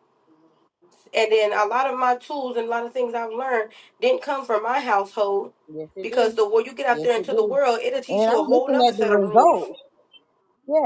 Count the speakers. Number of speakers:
2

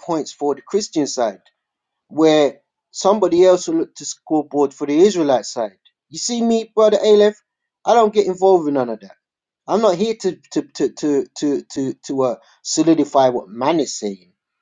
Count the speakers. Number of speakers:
1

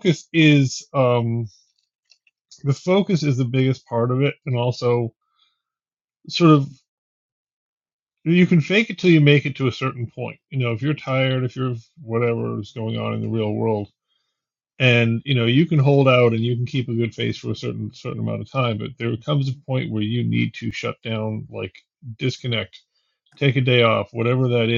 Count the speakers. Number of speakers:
1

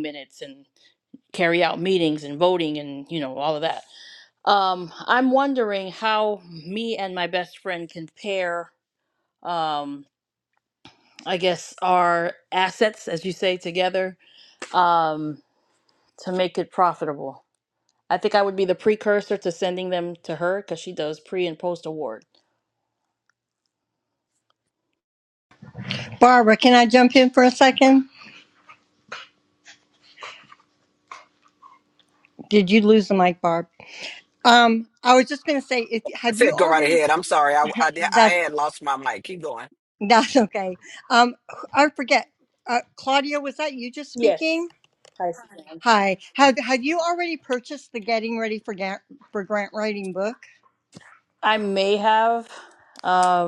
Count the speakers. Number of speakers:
3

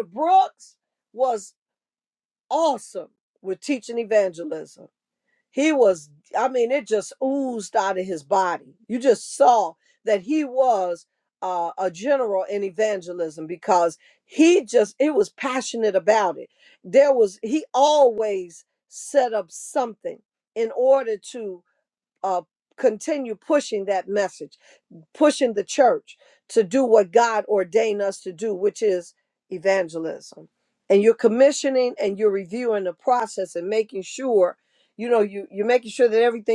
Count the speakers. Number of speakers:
1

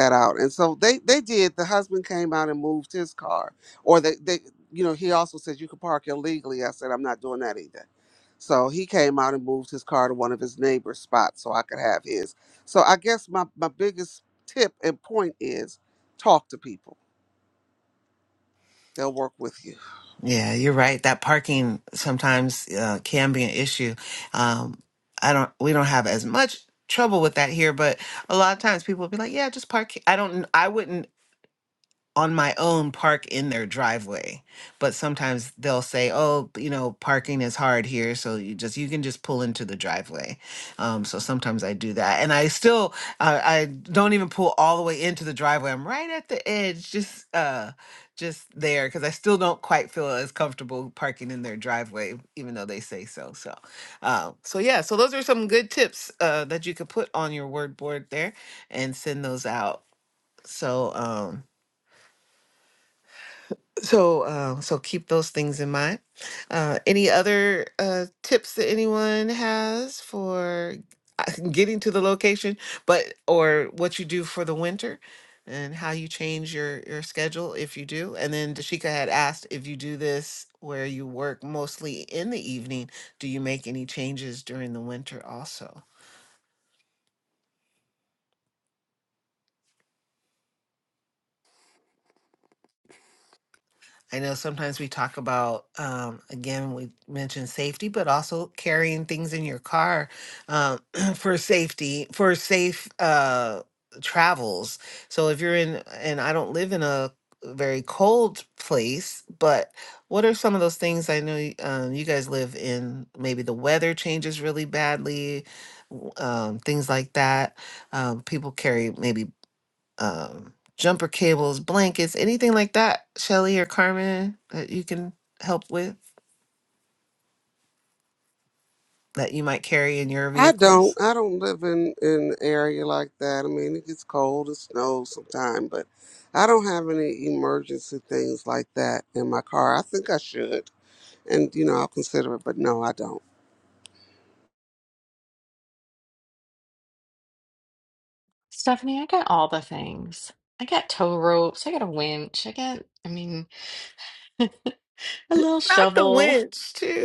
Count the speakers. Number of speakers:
3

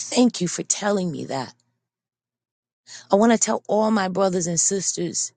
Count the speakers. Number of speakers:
1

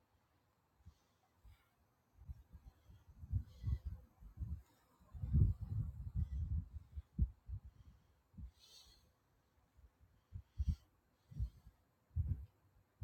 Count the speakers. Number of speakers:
0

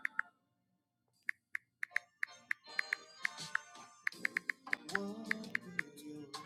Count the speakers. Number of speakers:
0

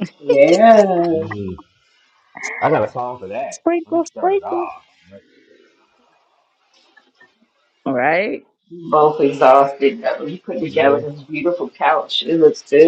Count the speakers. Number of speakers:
3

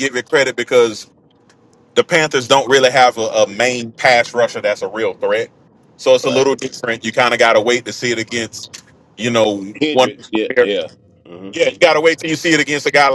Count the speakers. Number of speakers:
2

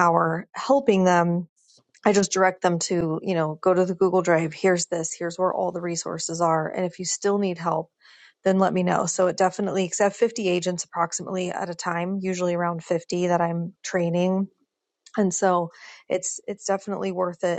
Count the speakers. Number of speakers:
1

